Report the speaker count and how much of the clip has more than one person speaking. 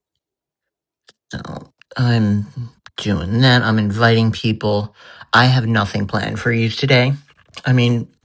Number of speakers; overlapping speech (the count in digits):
1, no overlap